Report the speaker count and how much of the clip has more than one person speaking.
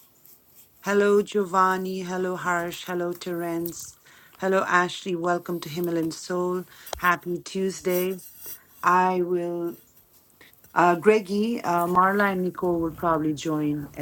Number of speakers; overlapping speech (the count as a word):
one, no overlap